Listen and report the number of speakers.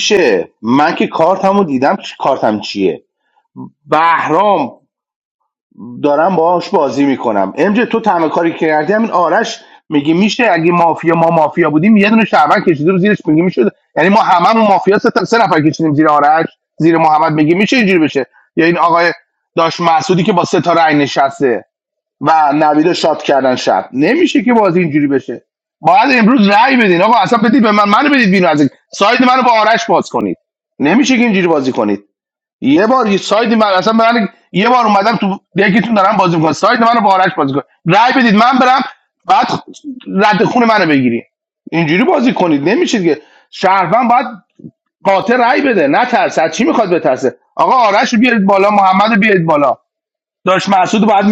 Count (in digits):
1